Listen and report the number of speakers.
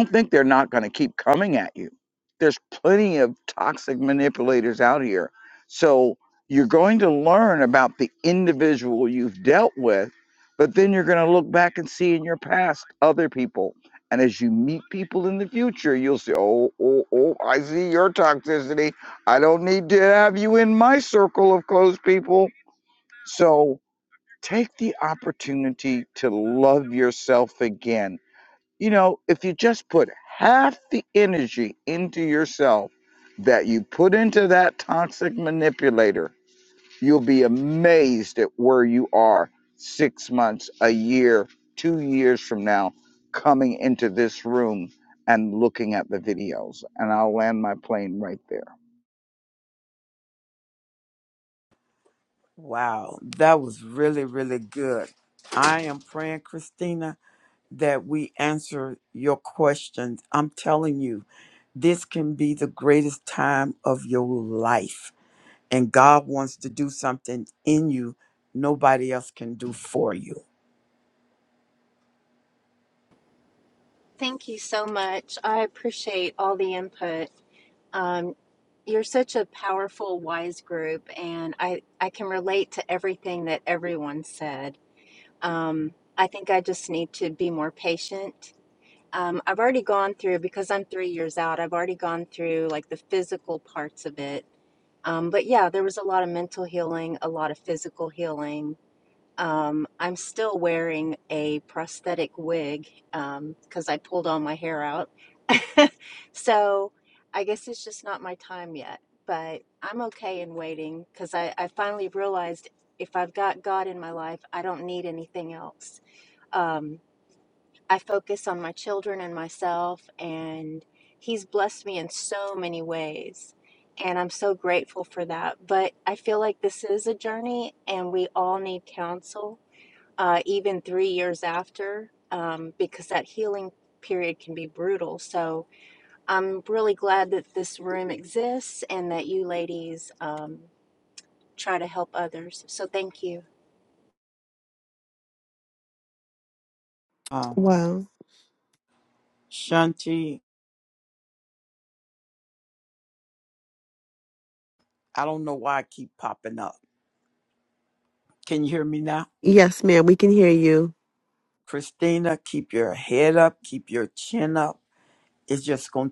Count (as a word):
four